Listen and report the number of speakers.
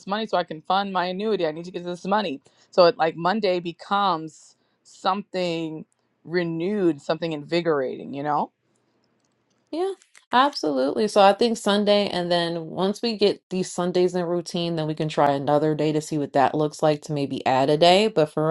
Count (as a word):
two